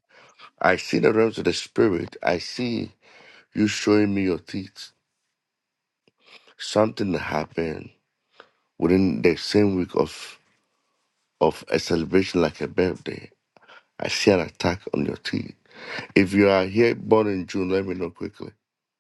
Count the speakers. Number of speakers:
1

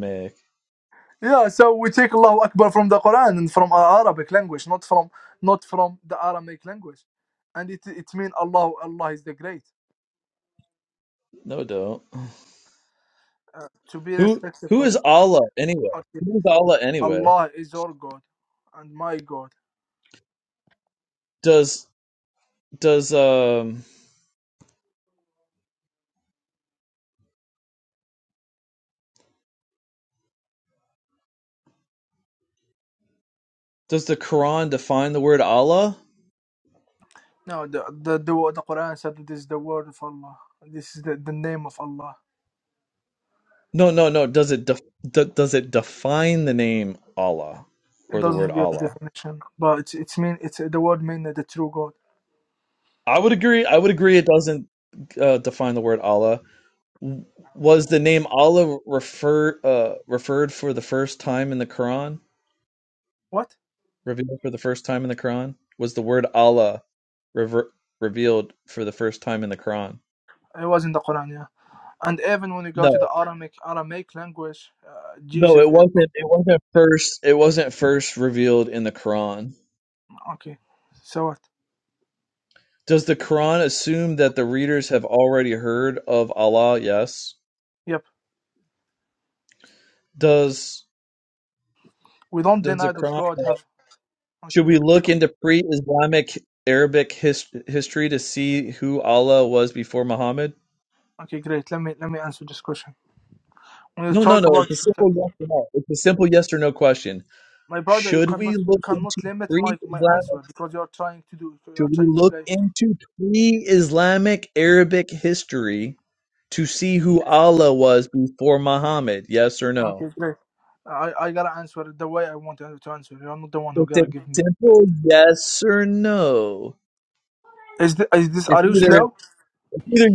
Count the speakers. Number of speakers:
2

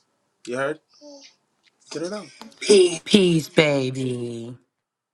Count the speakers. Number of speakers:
2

